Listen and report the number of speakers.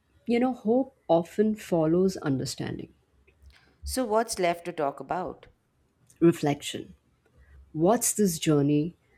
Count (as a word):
two